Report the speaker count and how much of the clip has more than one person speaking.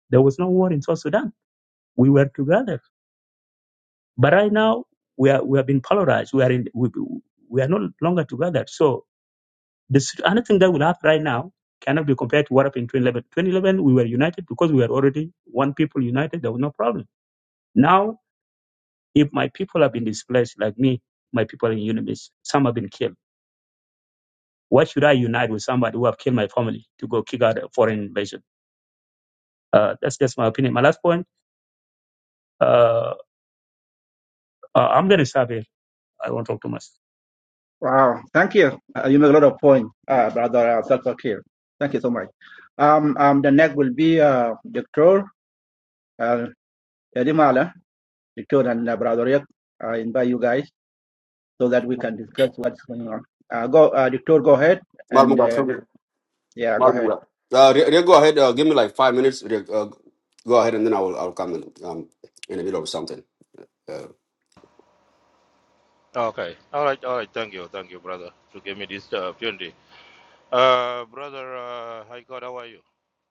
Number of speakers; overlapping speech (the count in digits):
4, about 1%